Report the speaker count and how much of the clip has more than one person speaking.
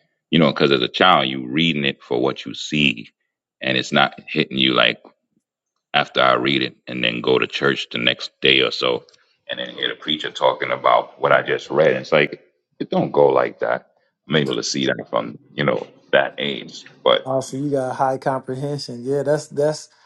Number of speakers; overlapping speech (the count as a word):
two, under 1%